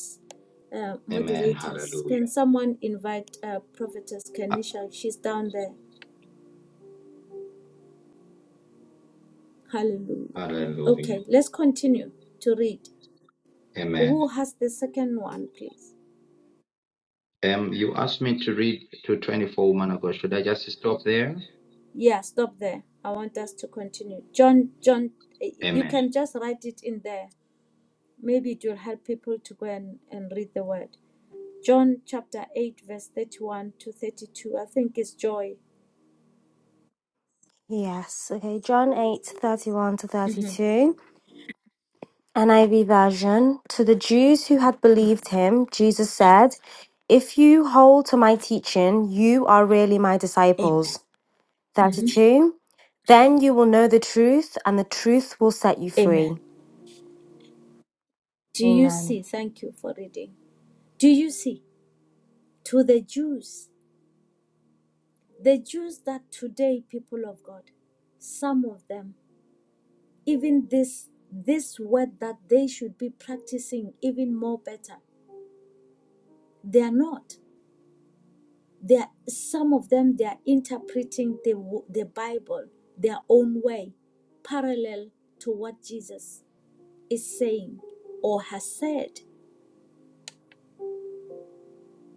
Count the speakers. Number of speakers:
three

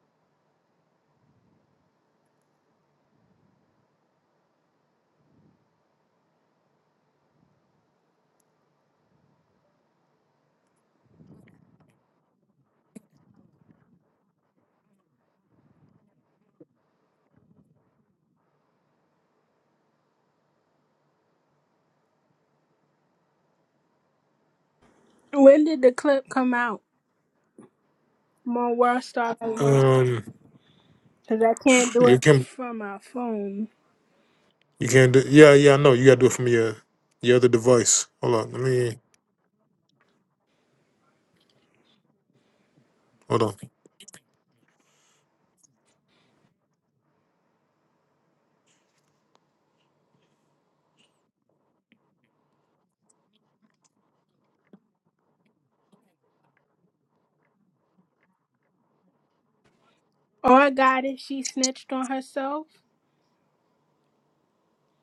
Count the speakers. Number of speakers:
two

